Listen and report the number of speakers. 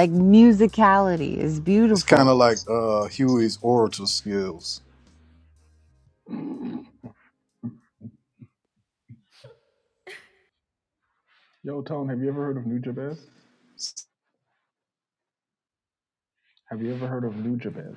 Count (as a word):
three